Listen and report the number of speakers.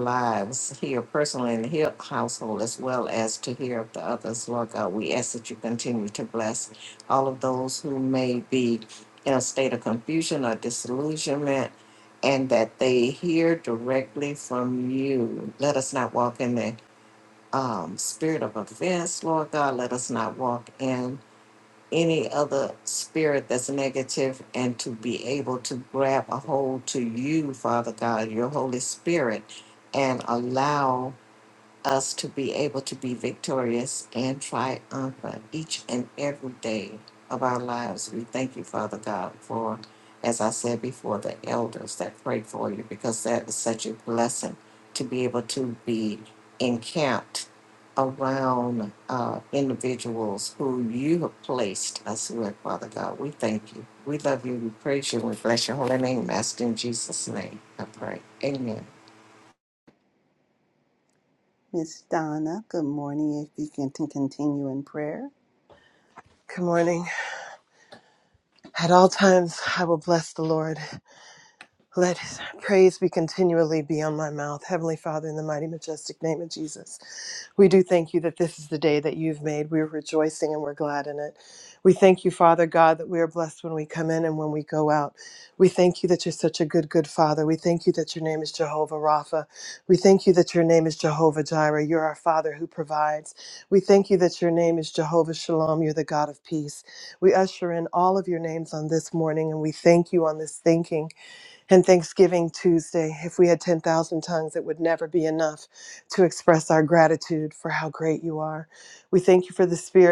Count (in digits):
3